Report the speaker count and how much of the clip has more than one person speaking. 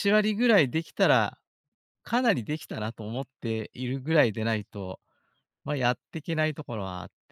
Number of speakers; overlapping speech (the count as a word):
one, no overlap